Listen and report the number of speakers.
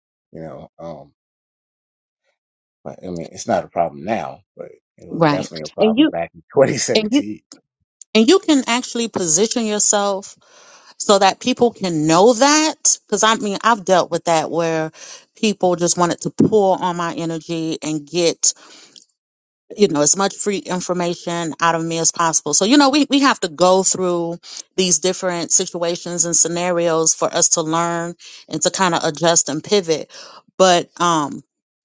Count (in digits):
2